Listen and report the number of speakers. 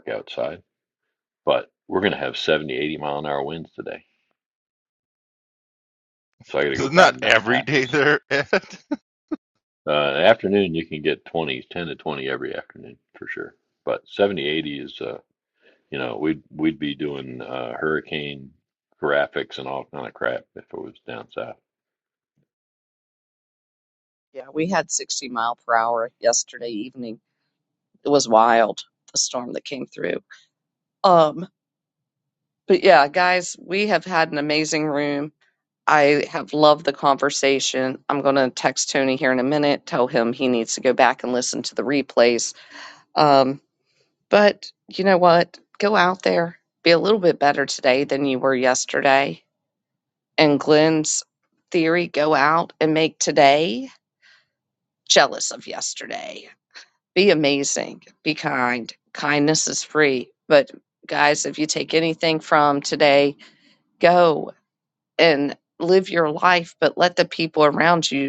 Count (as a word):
three